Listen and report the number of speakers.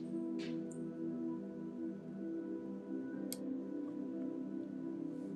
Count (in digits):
0